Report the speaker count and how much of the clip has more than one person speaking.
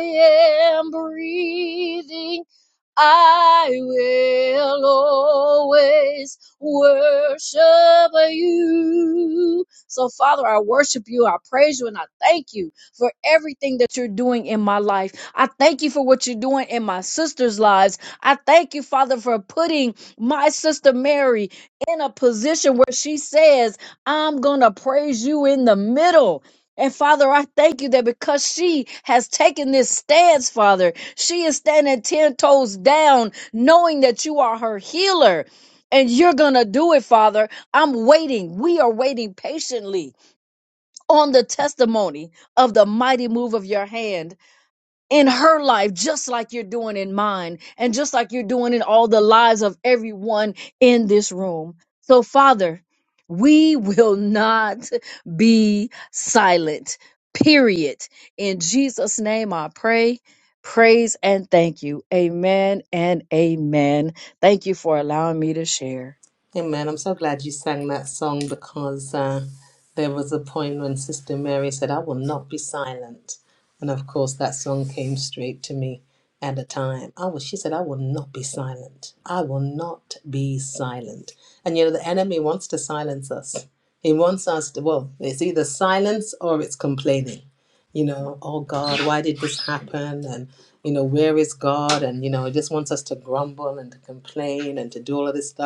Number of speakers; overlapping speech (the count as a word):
two, no overlap